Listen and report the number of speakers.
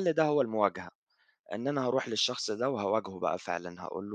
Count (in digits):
1